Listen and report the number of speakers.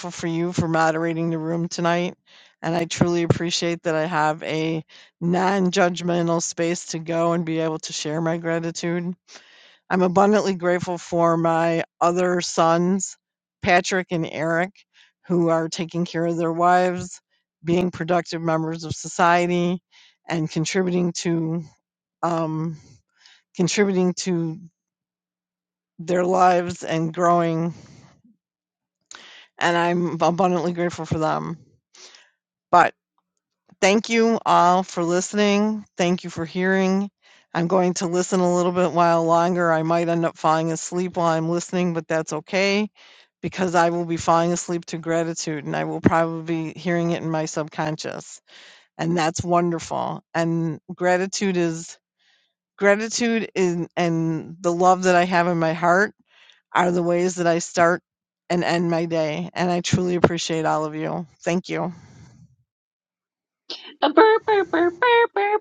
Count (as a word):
two